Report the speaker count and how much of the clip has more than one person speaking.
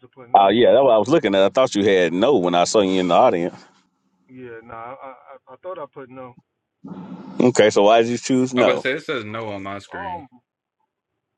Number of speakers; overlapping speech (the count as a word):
three, about 6%